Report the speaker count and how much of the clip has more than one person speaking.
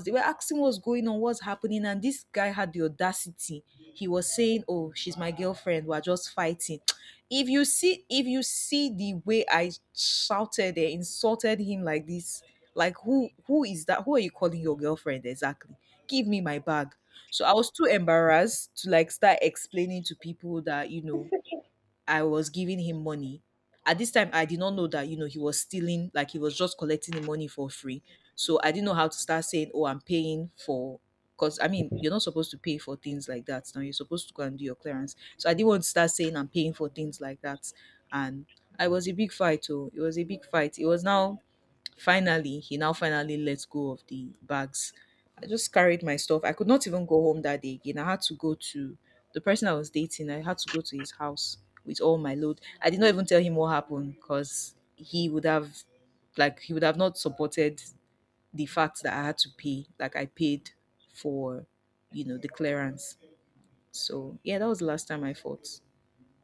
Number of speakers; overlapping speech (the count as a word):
one, no overlap